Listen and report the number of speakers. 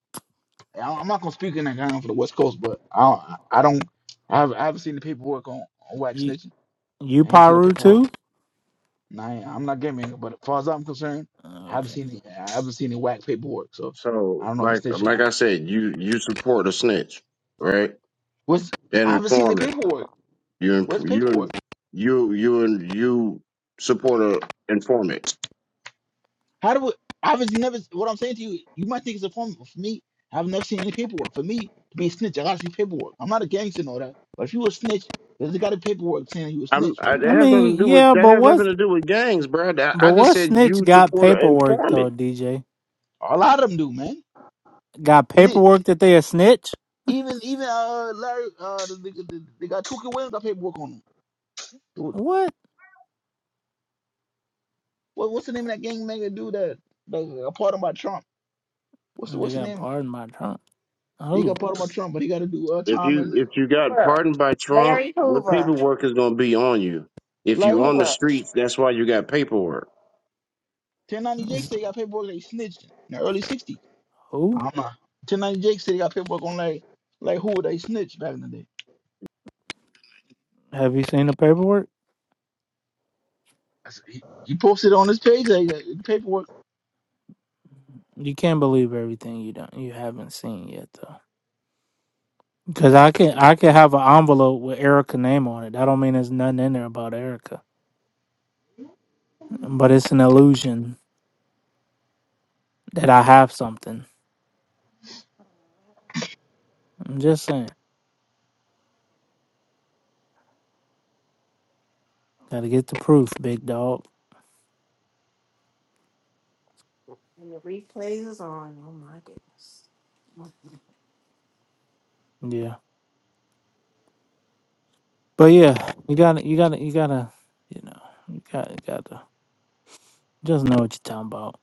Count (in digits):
4